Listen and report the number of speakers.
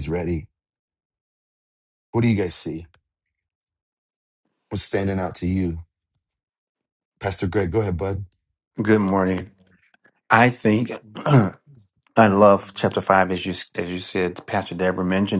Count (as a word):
two